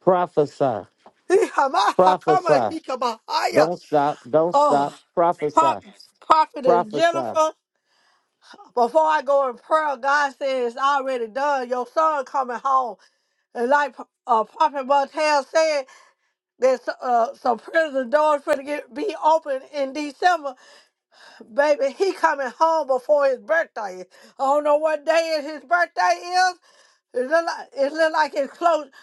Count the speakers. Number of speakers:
2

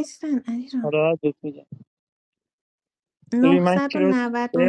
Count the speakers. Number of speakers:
2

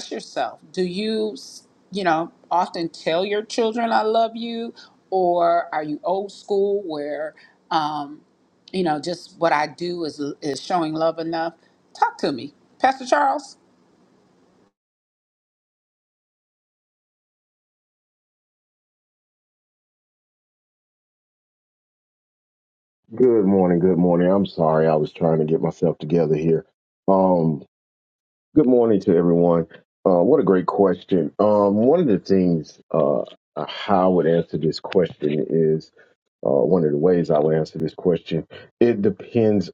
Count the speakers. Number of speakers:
2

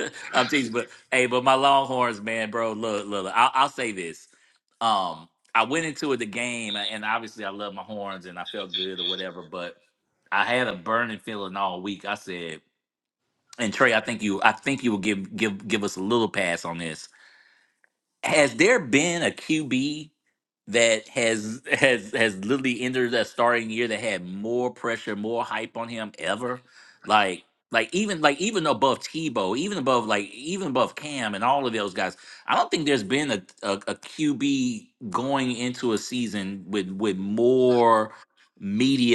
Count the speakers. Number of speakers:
1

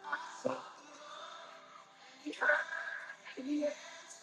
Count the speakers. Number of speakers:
0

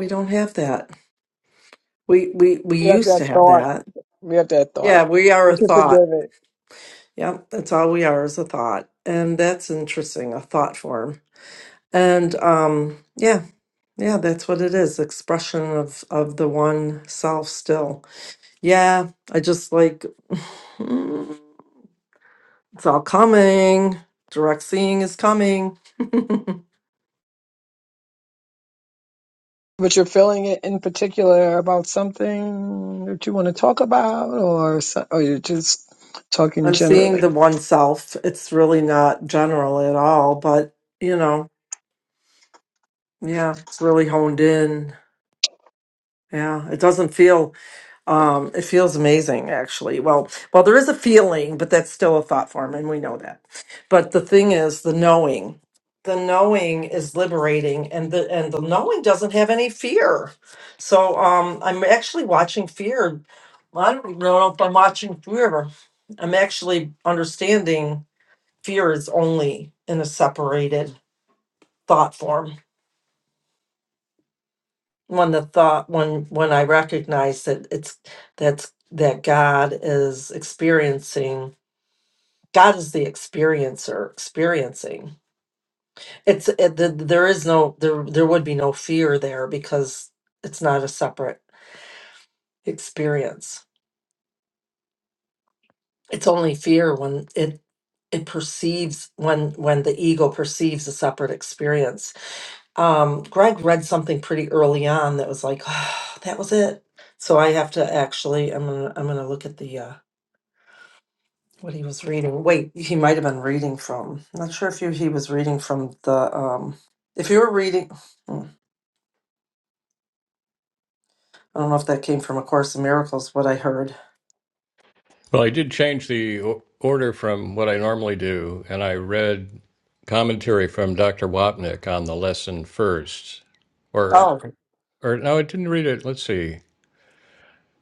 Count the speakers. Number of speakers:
3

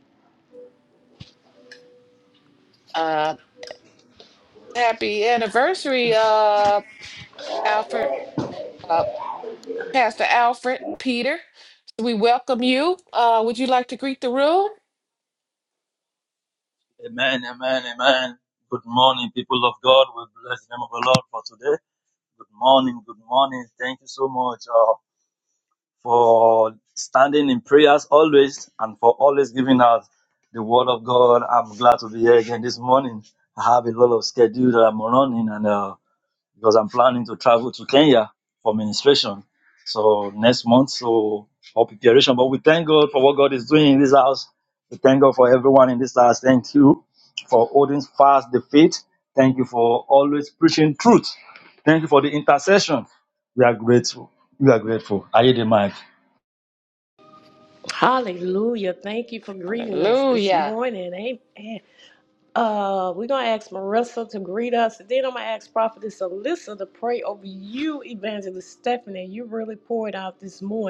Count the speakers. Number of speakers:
3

